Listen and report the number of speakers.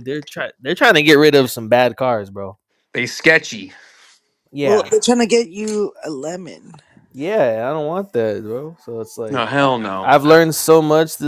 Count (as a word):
three